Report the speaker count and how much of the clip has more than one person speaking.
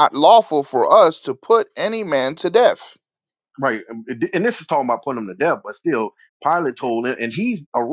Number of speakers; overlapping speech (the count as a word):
two, no overlap